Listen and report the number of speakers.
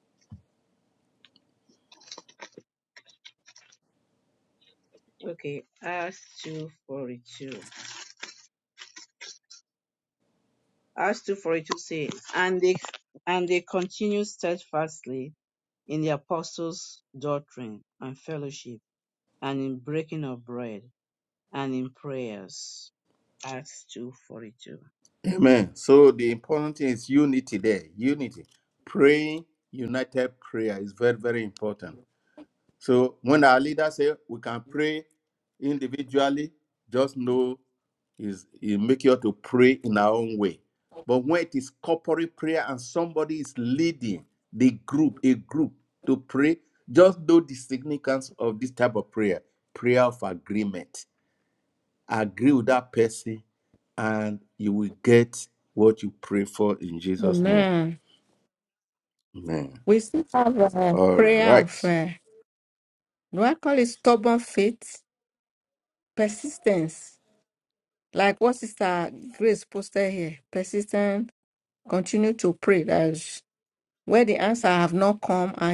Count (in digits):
3